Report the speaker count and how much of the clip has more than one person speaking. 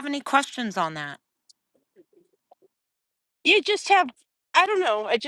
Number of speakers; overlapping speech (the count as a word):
two, no overlap